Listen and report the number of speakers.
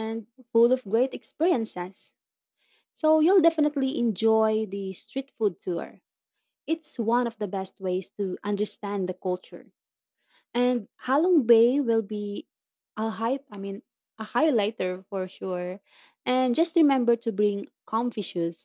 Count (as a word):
one